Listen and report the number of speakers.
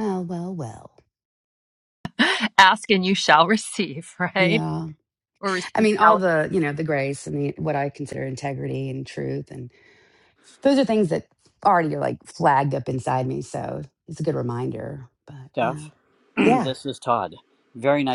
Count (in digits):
3